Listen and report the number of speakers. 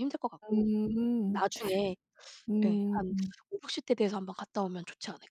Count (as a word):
two